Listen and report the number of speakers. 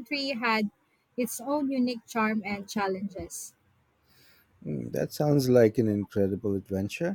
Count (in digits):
2